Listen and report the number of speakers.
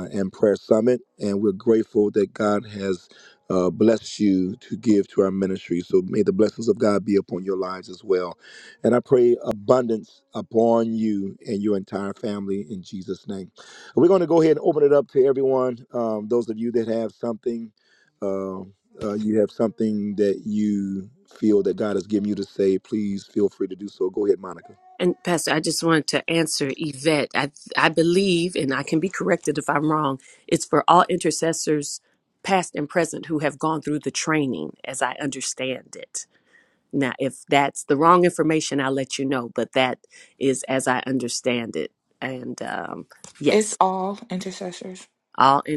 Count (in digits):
3